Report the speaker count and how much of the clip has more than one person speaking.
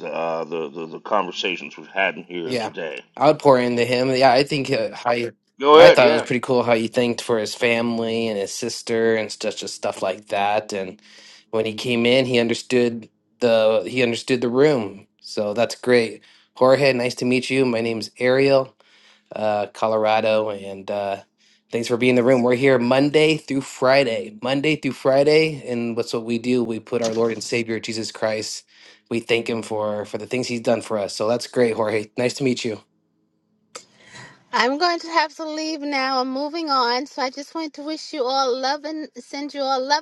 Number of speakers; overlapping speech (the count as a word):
three, about 2%